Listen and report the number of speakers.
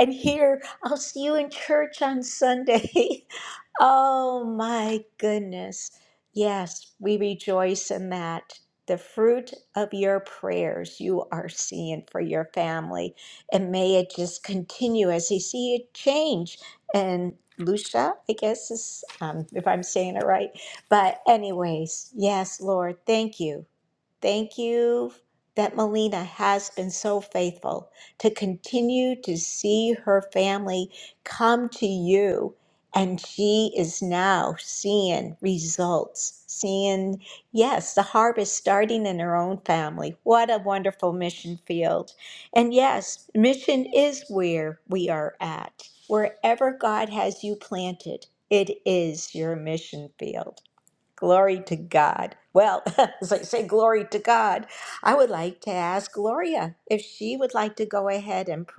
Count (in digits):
1